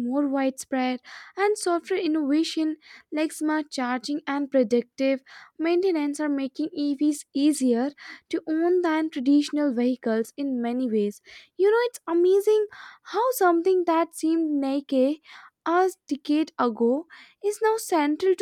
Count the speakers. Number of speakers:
one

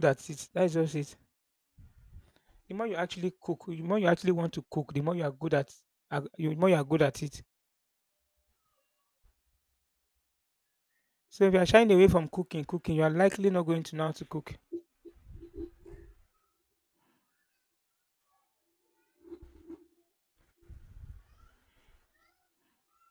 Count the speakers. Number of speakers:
one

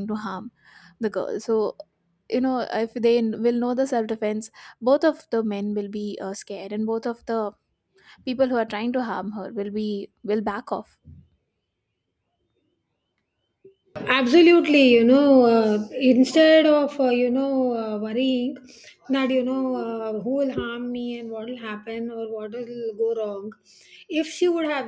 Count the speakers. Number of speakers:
two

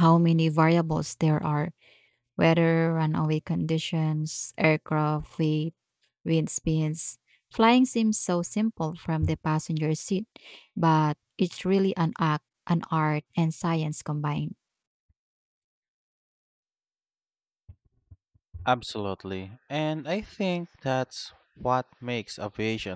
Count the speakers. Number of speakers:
two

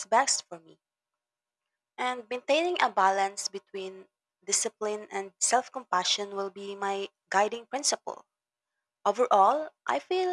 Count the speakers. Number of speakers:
one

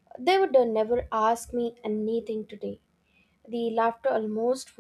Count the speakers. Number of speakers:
one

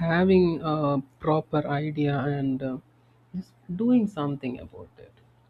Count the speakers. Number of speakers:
one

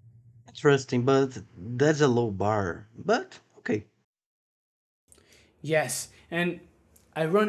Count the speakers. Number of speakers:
two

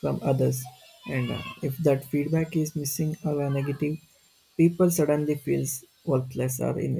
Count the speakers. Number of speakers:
one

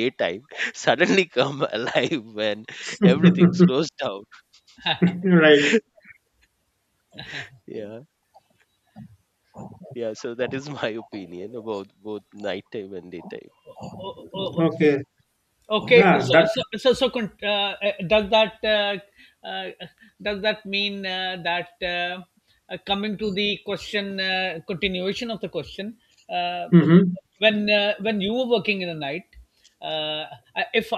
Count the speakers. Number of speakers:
three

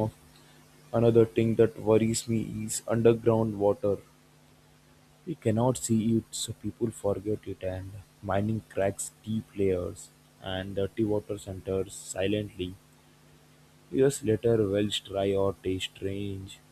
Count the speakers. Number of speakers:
one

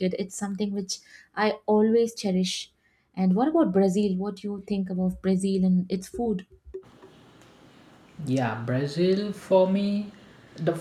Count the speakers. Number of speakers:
two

